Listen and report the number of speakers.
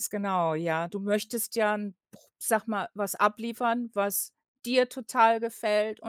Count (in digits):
1